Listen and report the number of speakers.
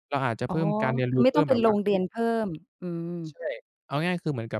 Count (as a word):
two